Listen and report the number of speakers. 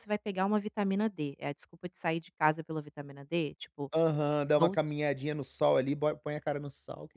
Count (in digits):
2